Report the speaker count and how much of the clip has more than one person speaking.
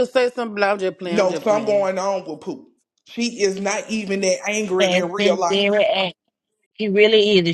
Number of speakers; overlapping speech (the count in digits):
3, about 20%